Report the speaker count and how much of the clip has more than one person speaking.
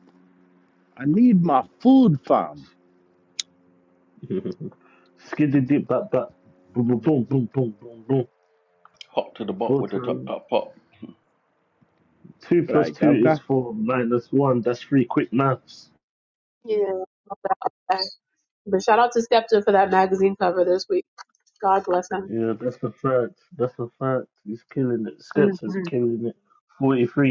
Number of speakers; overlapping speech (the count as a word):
four, about 7%